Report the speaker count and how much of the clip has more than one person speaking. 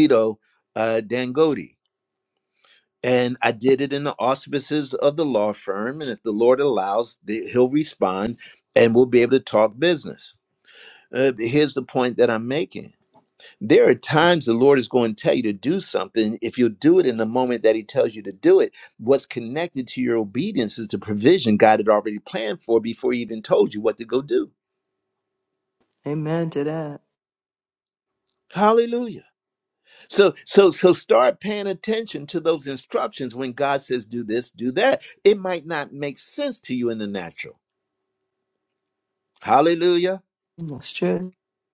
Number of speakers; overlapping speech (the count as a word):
two, no overlap